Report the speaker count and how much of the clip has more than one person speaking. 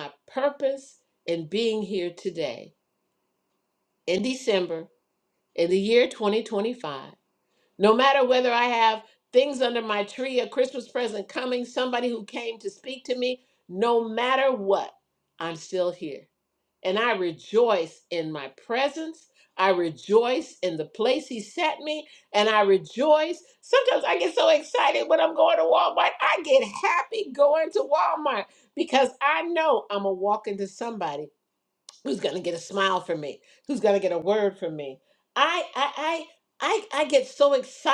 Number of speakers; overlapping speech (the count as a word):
one, no overlap